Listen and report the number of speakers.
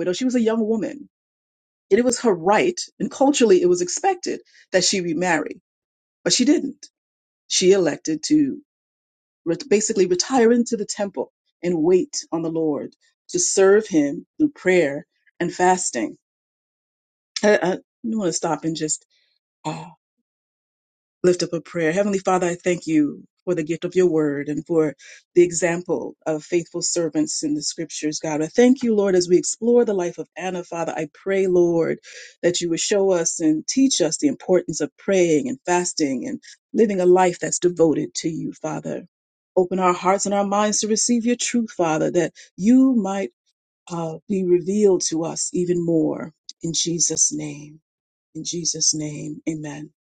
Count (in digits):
1